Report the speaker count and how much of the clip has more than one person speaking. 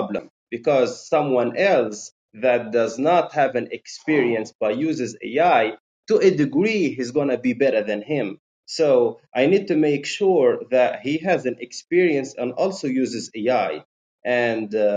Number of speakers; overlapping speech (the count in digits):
1, no overlap